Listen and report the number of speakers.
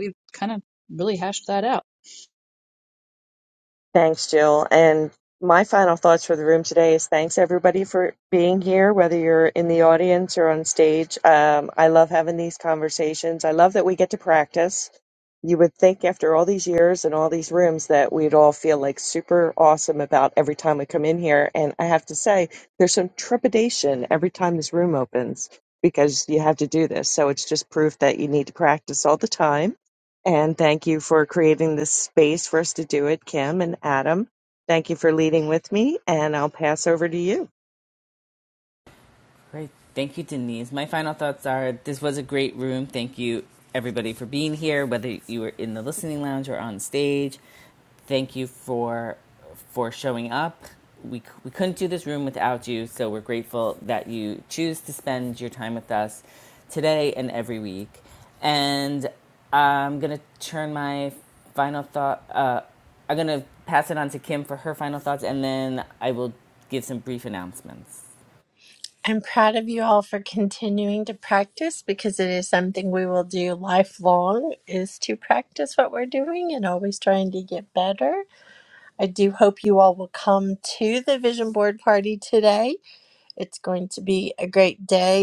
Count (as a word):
four